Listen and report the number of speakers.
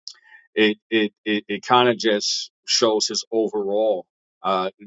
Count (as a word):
one